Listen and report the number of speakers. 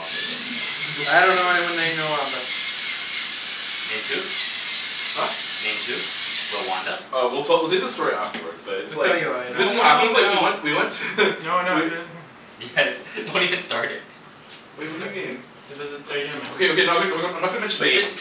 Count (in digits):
4